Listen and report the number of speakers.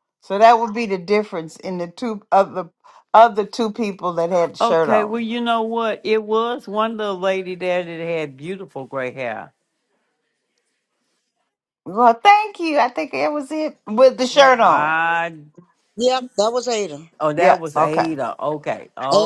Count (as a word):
three